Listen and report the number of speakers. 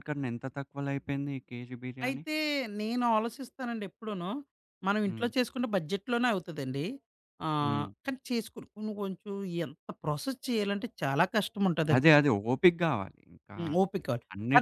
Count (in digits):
2